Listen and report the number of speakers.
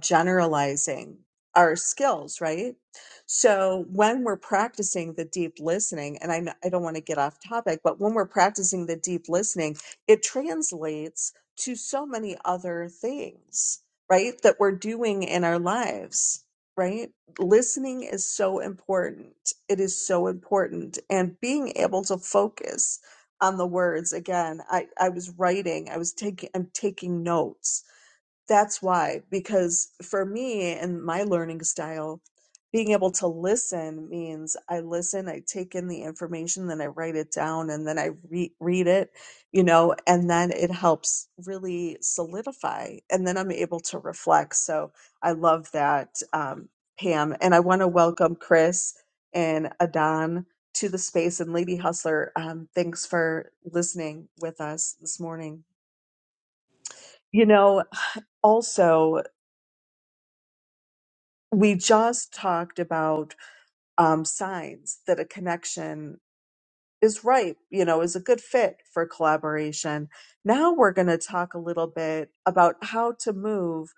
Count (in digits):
1